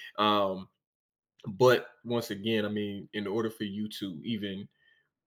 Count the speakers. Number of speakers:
one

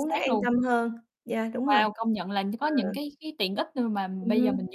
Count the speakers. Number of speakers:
two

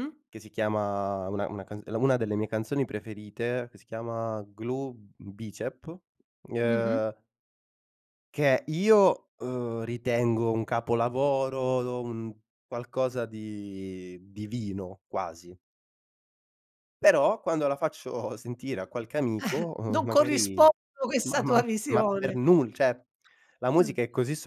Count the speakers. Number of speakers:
two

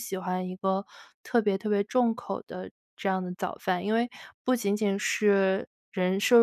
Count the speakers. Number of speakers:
one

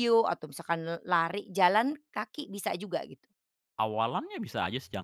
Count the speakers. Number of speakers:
two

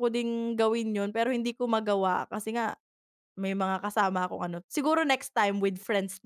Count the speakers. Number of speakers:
one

